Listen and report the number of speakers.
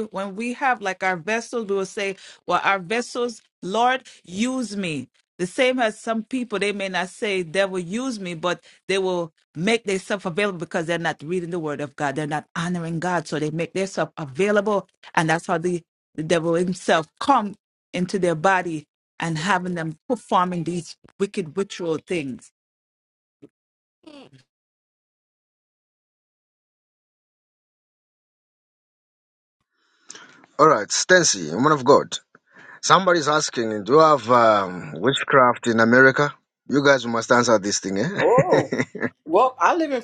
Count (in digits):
3